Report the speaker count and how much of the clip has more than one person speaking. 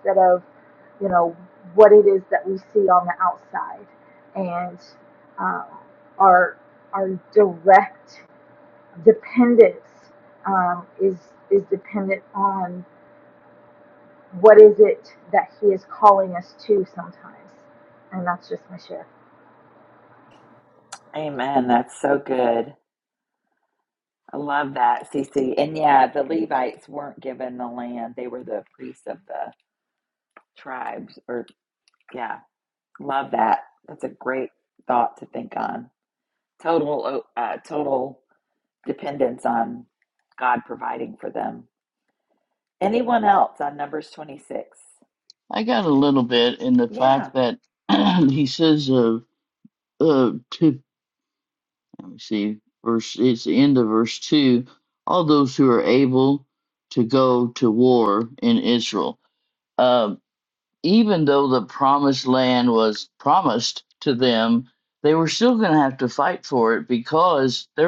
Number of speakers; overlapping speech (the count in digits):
3, about 1%